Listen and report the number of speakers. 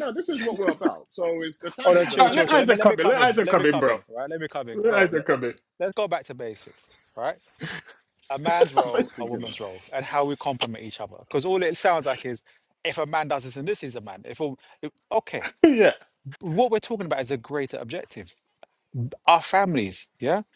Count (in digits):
3